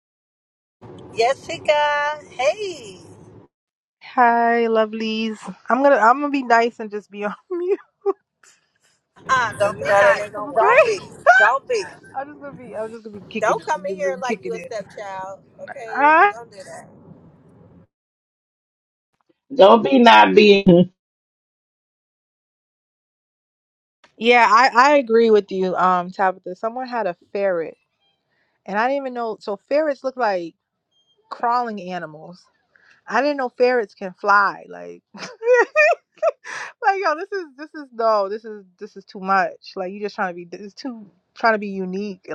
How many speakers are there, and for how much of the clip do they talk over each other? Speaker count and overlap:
4, about 8%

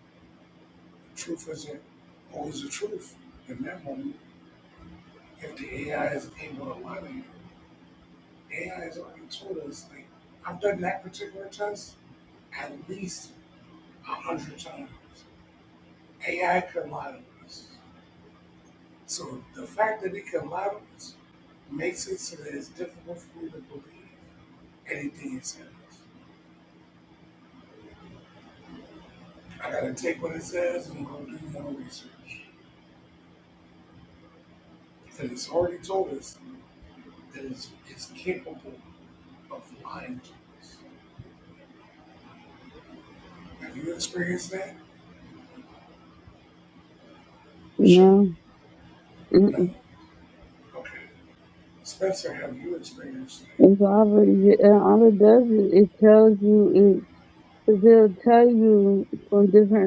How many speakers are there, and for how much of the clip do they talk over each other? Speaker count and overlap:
2, about 1%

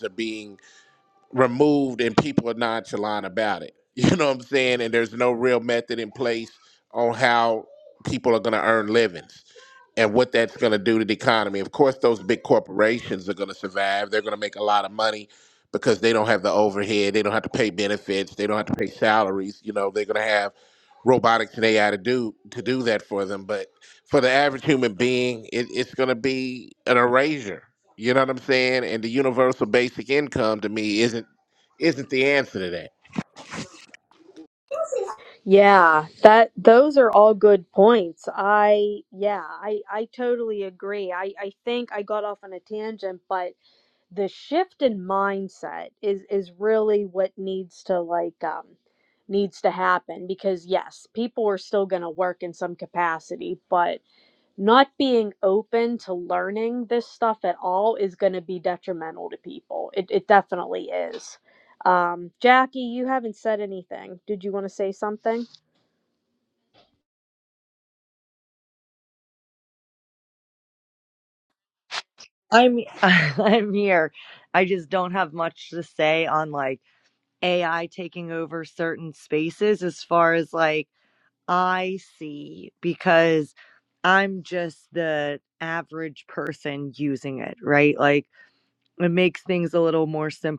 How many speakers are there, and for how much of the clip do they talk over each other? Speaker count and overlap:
3, no overlap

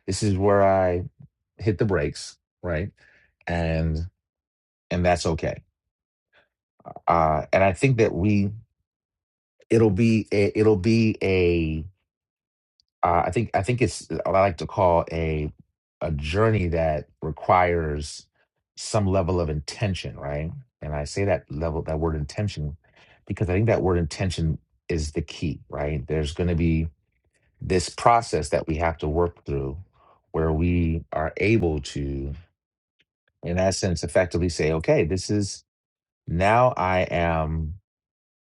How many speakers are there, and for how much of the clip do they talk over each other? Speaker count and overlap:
1, no overlap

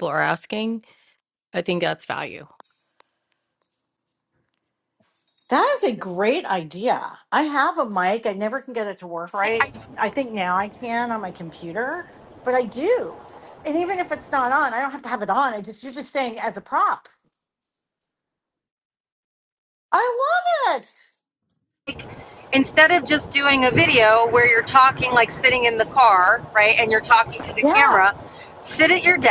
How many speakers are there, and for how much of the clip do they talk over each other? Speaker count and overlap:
3, about 3%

